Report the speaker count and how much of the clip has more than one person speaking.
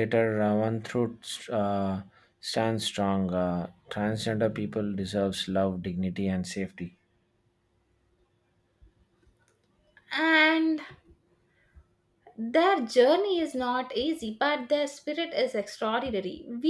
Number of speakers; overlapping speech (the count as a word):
two, no overlap